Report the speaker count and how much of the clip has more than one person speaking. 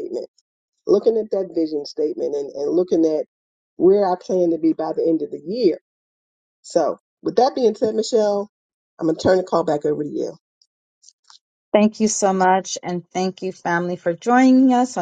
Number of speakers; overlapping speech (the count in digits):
2, no overlap